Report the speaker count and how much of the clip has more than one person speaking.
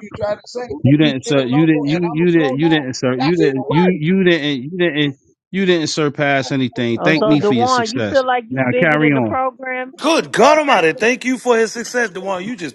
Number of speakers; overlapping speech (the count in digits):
4, about 40%